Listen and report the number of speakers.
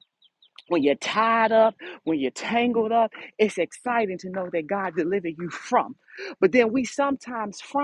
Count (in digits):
1